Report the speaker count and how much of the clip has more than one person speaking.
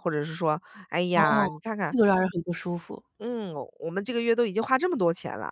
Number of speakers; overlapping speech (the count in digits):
2, about 8%